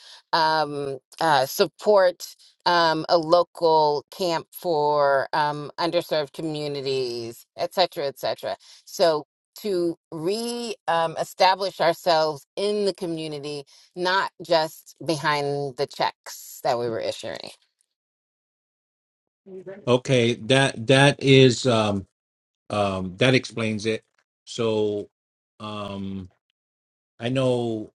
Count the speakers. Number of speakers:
2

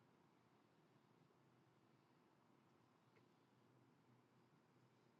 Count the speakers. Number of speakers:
0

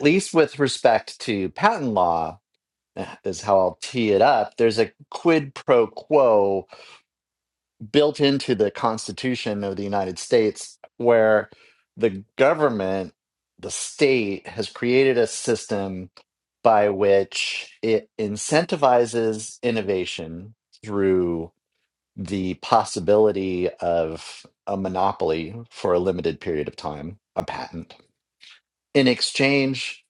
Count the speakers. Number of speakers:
1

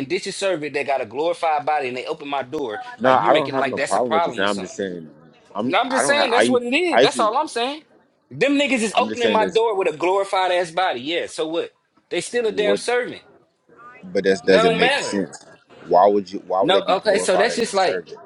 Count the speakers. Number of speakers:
2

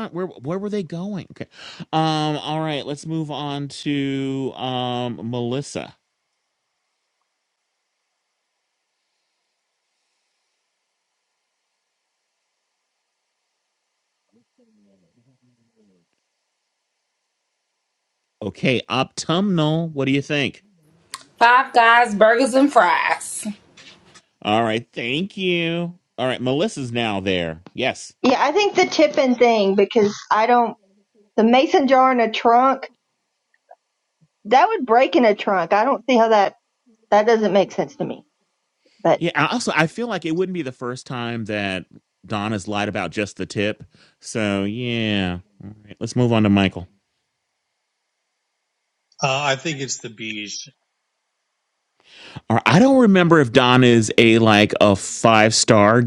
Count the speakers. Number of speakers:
4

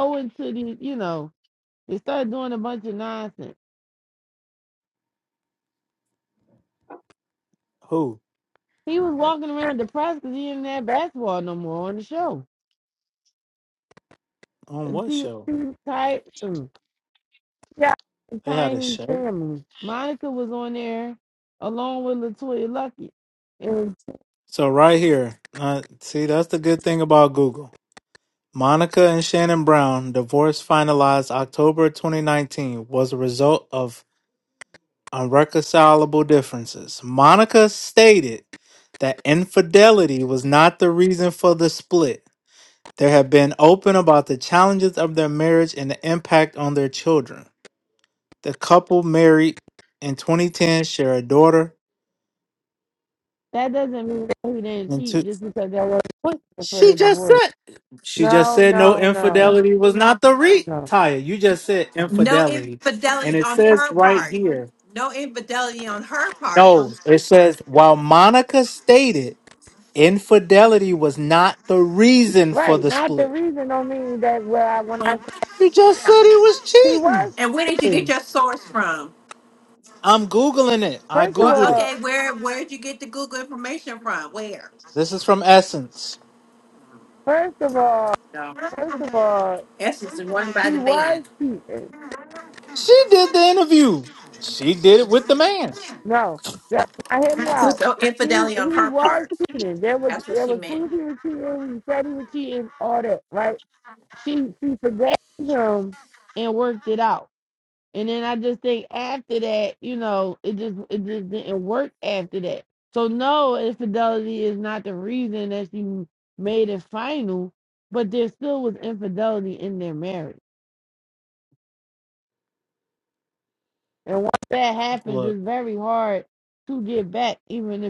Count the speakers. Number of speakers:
3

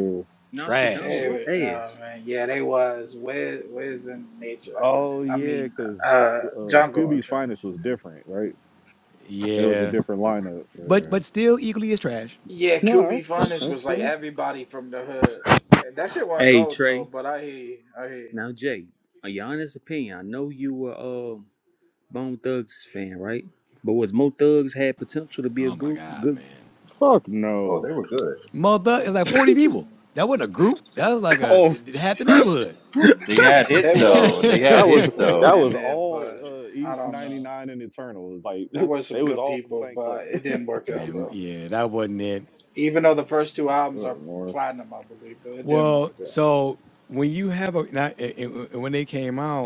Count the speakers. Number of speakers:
5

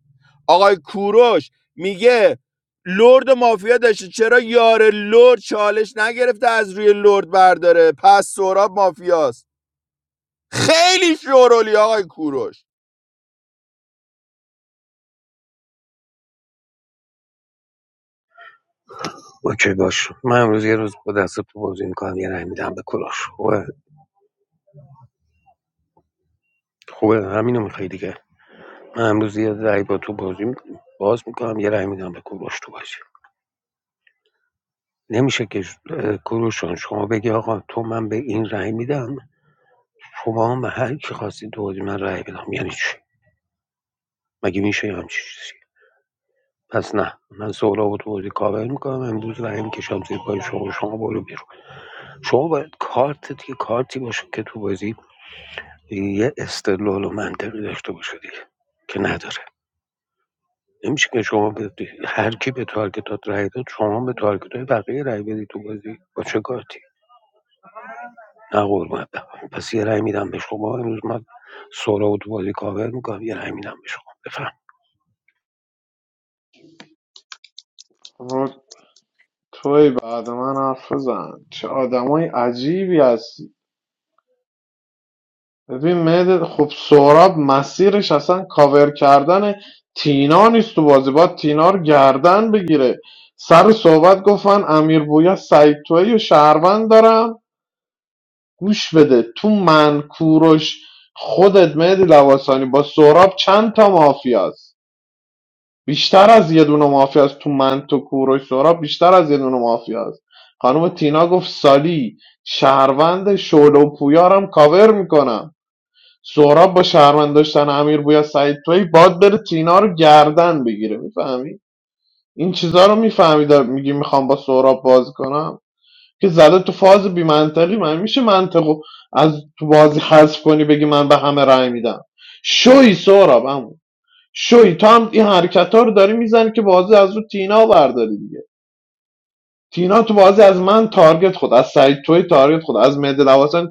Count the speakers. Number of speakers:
3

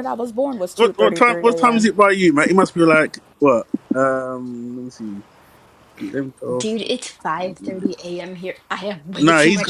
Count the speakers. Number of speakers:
3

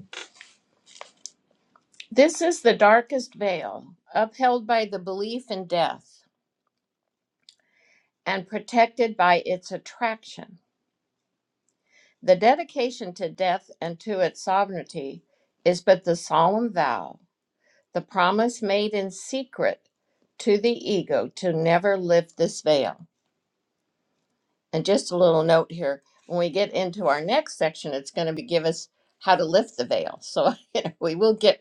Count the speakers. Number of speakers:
1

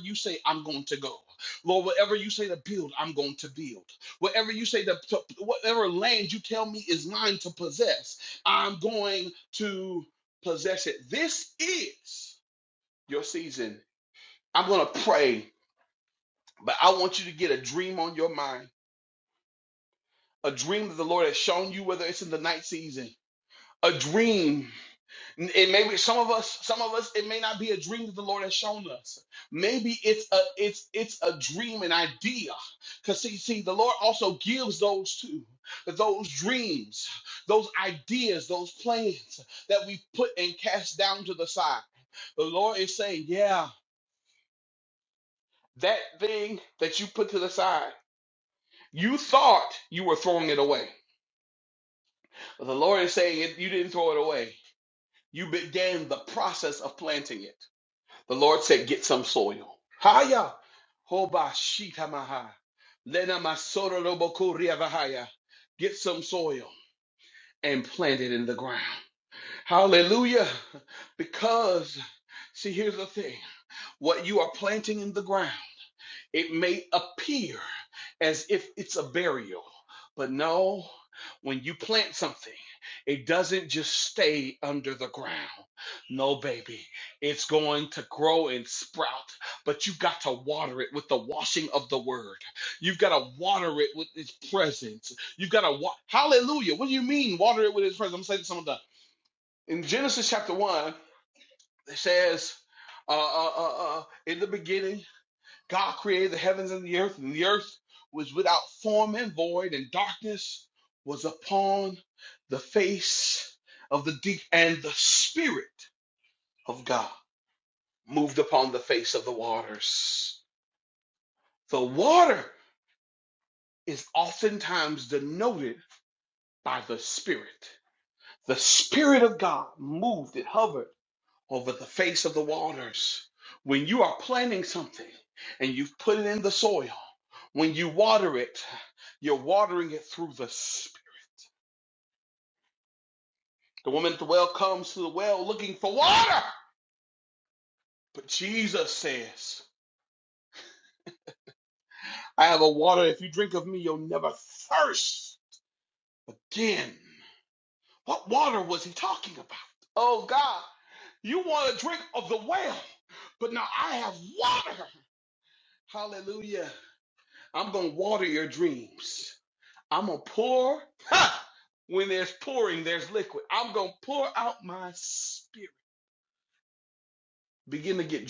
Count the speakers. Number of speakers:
1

